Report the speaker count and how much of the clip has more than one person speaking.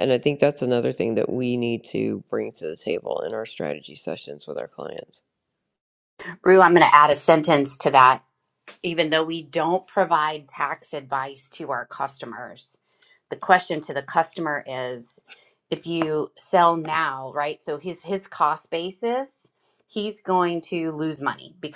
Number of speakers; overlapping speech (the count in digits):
2, no overlap